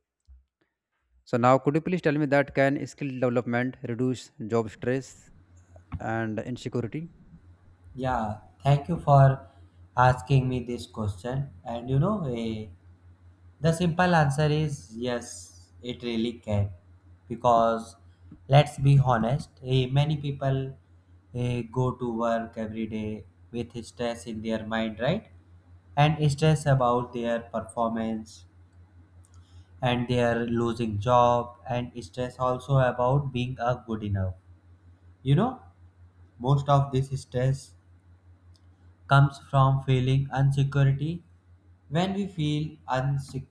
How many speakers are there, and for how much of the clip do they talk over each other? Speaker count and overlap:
2, no overlap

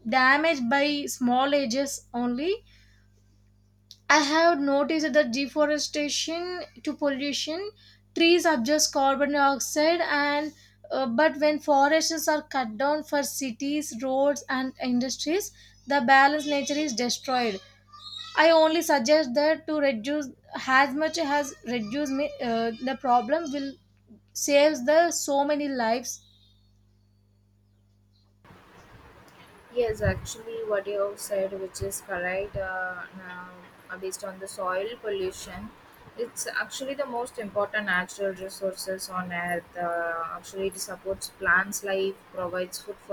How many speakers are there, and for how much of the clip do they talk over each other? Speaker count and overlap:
2, no overlap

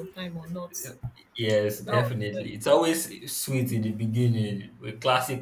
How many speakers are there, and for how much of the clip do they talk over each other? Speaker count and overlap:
2, about 12%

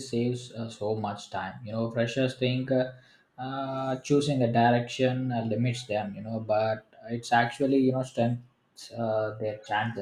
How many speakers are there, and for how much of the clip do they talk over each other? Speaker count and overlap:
1, no overlap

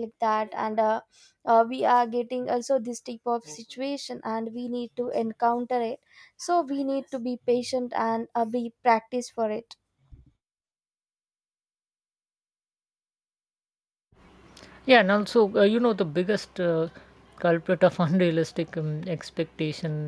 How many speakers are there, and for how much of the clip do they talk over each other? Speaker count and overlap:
2, no overlap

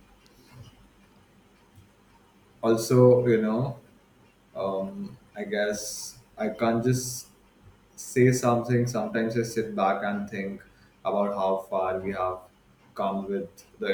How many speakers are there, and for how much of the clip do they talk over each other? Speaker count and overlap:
1, no overlap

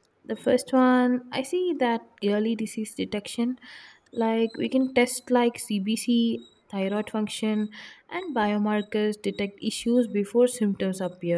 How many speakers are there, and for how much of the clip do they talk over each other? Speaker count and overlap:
1, no overlap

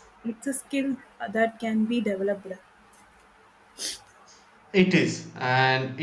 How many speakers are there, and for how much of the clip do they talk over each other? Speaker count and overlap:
2, no overlap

